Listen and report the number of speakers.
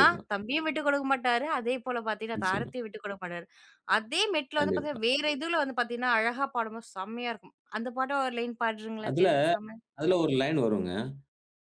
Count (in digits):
2